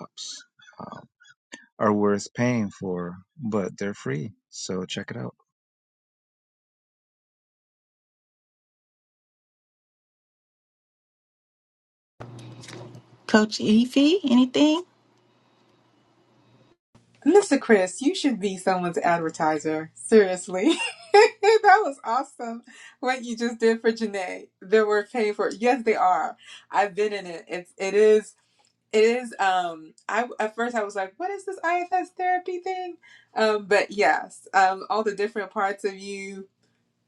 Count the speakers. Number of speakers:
3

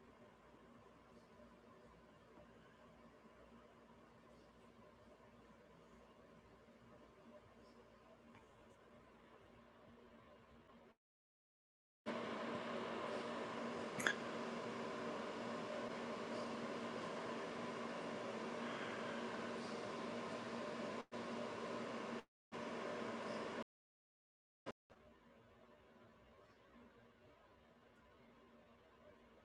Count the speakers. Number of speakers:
0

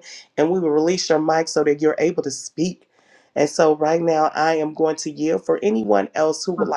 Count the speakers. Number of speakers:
1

